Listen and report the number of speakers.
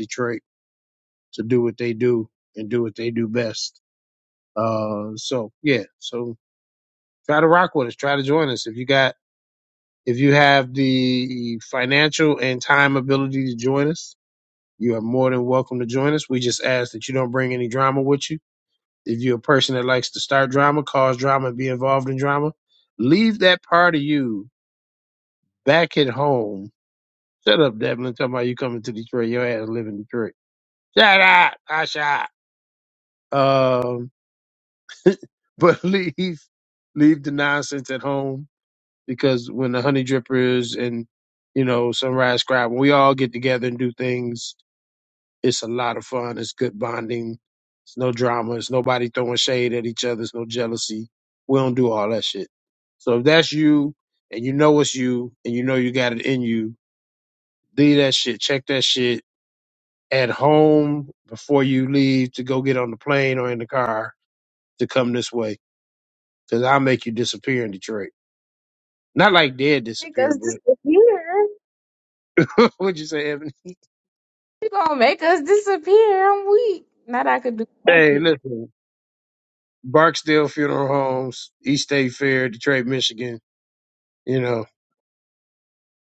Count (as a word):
two